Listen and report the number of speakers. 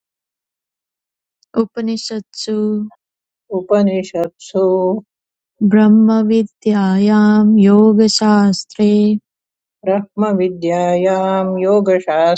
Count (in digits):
2